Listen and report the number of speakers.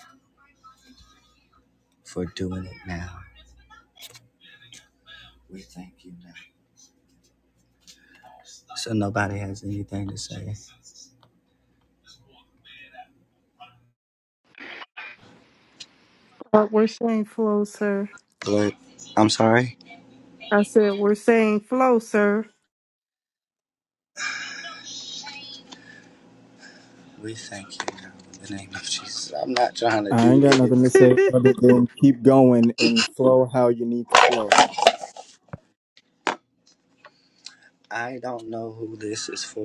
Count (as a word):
three